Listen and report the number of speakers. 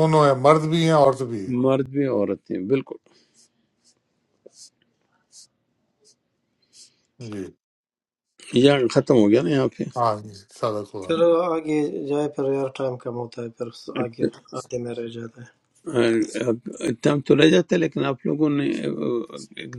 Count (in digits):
3